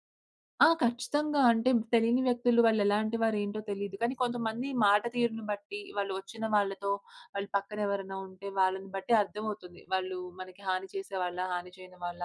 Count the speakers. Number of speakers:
one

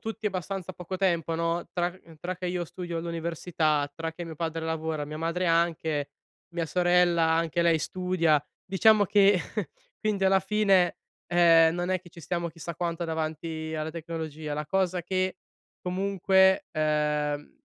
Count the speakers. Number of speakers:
one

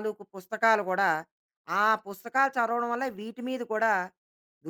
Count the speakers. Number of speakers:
one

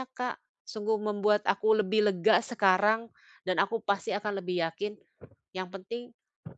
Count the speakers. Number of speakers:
one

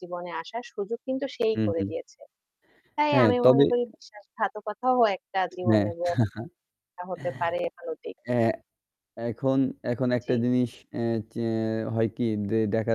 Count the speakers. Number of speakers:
two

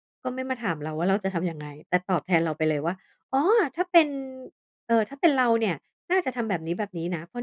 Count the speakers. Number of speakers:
one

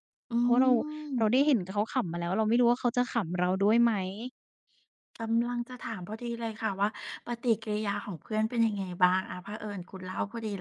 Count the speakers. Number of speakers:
two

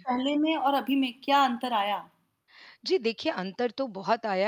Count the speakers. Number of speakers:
two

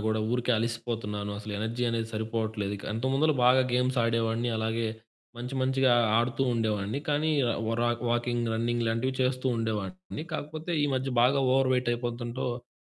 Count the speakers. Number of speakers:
one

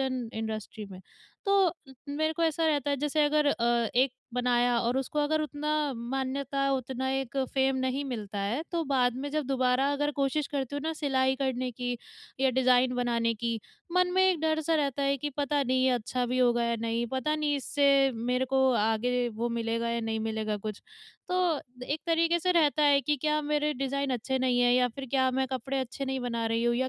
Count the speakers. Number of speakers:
one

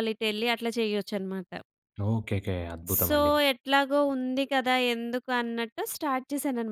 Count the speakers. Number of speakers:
two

